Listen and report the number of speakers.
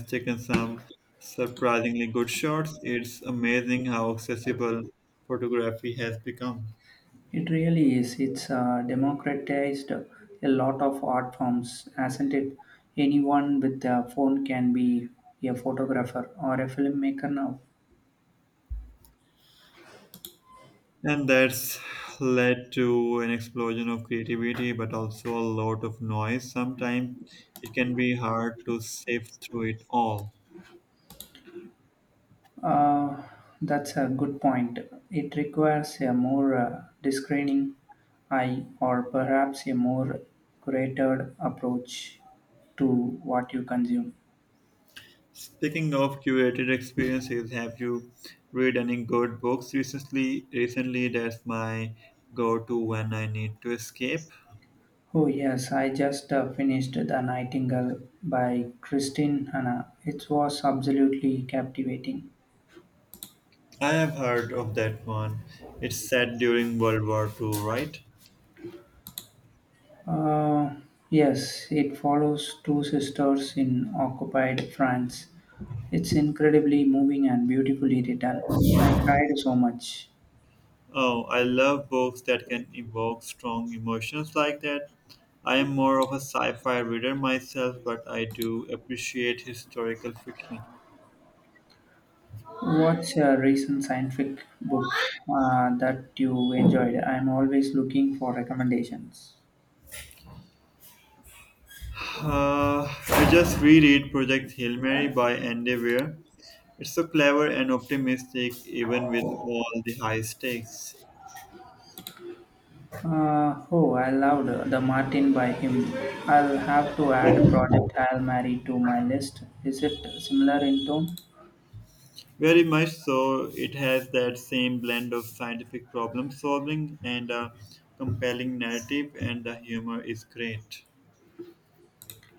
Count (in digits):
2